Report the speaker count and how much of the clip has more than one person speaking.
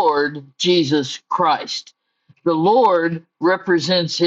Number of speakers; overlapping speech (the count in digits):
1, no overlap